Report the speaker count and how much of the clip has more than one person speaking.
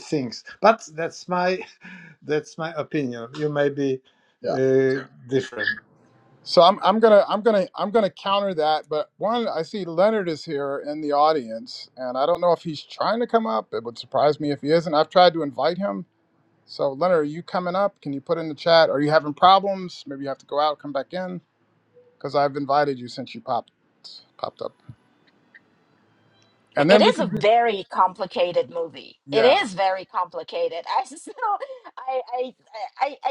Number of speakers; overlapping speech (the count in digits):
3, about 4%